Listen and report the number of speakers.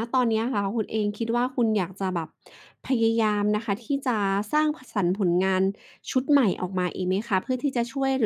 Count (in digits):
1